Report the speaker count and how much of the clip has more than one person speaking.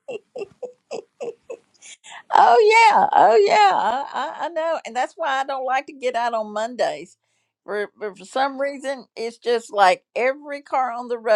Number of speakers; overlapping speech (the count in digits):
1, no overlap